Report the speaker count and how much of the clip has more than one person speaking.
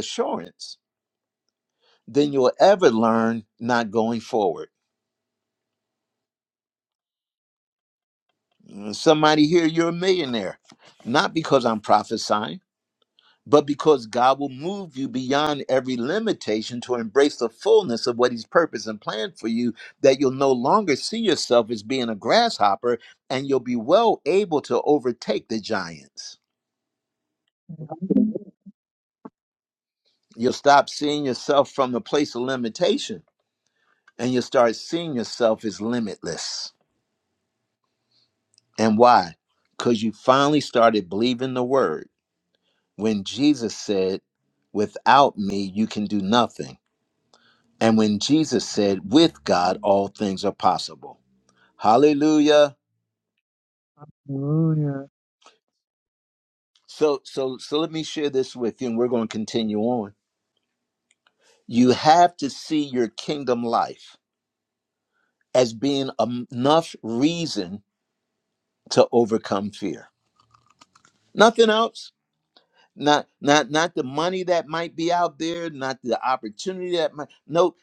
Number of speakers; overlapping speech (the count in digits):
2, no overlap